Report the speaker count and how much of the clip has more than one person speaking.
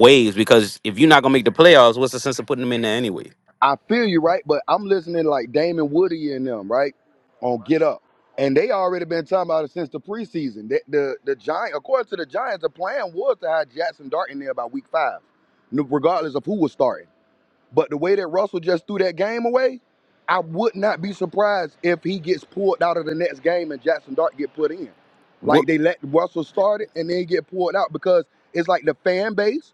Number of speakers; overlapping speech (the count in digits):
2, about 1%